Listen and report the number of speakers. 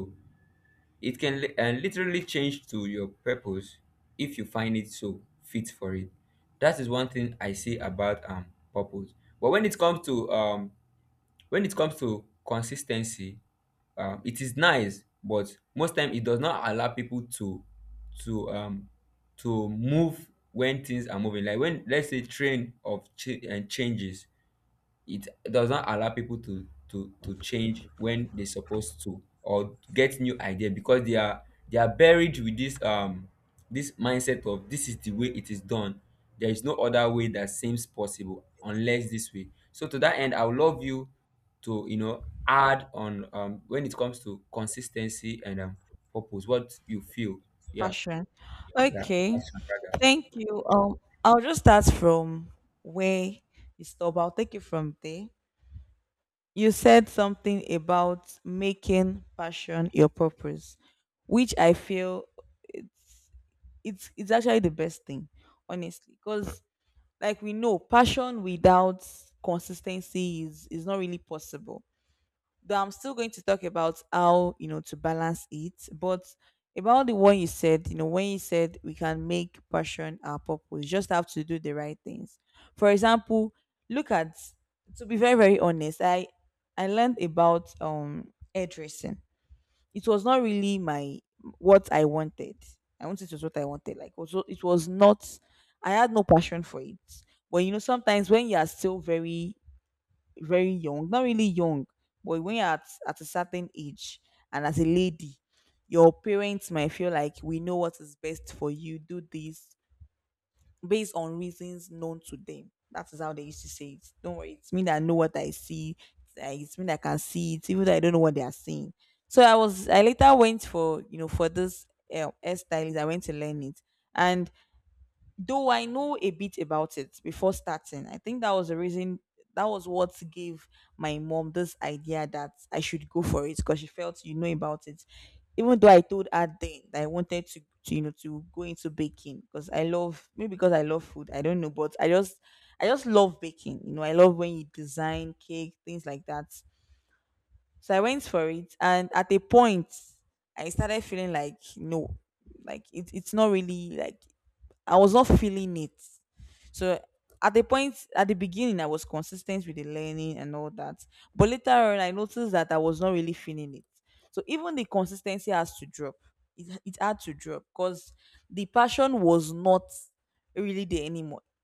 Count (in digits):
2